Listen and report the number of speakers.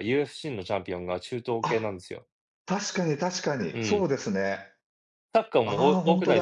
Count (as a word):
two